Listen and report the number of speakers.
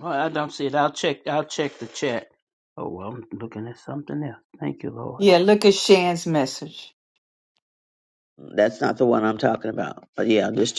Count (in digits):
3